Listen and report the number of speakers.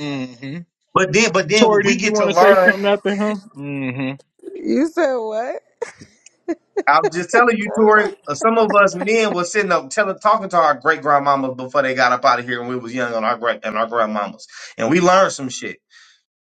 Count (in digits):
3